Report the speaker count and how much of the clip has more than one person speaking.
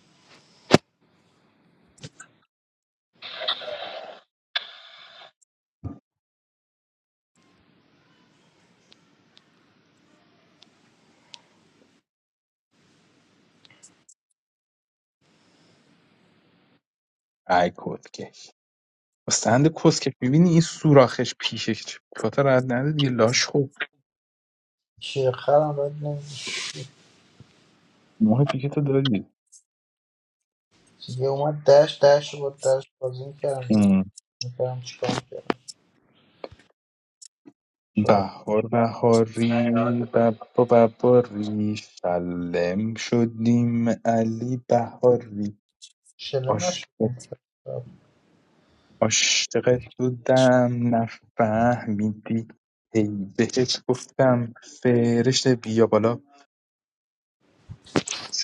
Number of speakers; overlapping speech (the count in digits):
2, about 1%